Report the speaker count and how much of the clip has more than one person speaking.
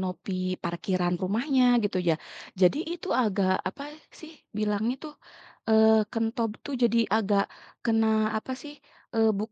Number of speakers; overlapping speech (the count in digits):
1, no overlap